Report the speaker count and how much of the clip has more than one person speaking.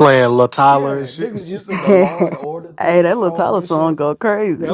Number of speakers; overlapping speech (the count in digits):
3, about 46%